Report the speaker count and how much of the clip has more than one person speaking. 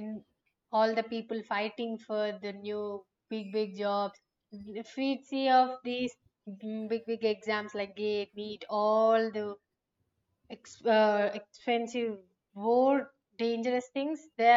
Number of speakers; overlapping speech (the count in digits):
1, no overlap